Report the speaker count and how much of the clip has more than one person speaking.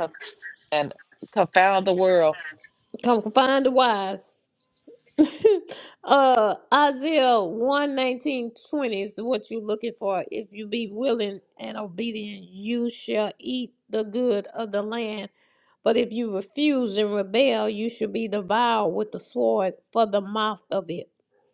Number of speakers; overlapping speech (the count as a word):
two, no overlap